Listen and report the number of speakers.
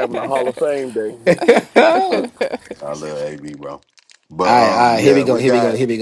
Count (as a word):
three